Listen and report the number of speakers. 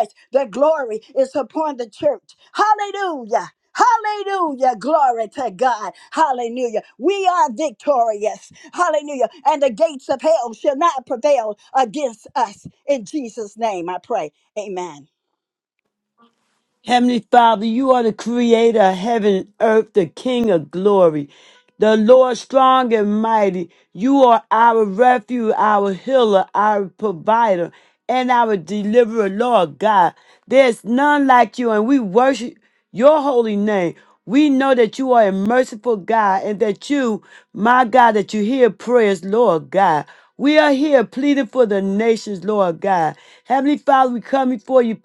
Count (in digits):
2